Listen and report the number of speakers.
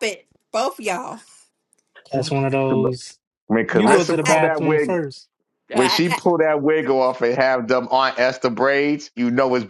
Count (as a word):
three